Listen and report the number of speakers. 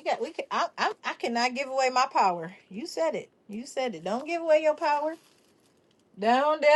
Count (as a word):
one